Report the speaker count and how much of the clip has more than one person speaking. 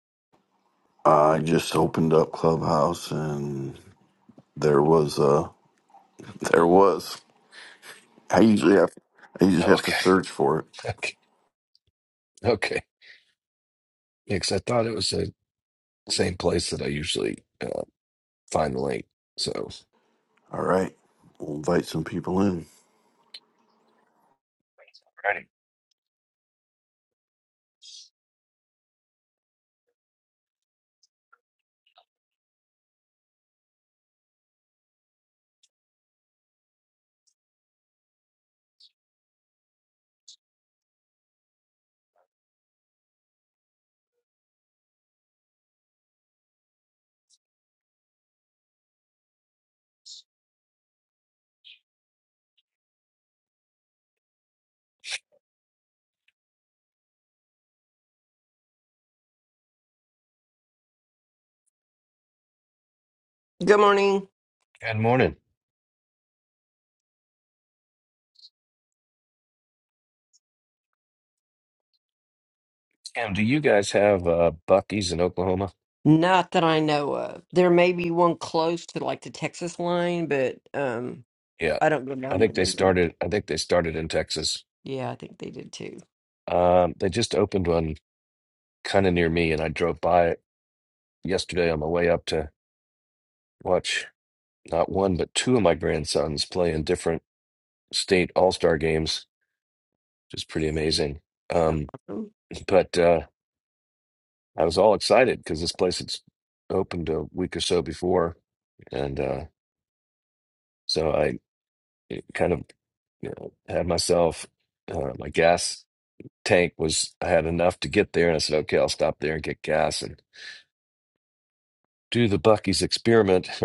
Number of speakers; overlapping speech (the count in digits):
3, about 1%